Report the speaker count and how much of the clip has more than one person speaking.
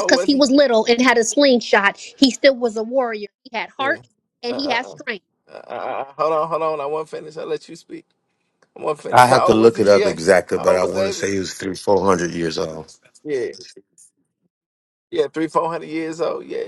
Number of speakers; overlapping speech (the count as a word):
three, about 17%